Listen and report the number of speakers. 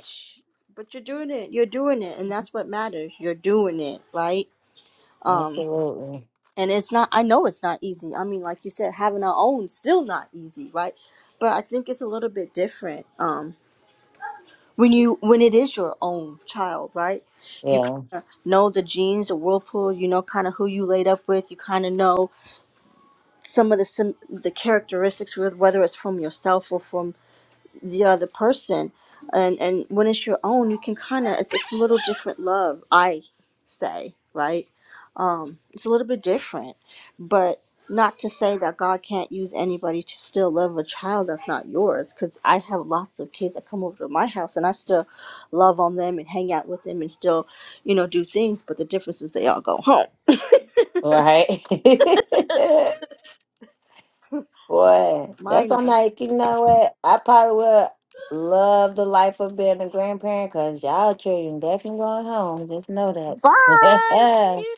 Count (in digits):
2